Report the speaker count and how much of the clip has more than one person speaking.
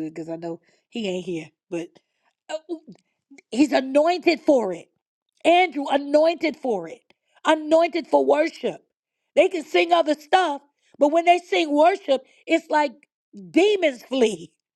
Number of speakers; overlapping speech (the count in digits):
1, no overlap